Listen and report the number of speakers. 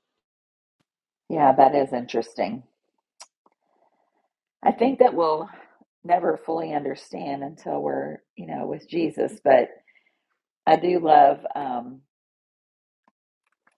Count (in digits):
1